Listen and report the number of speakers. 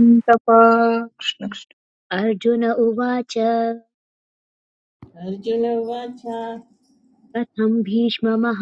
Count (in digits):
3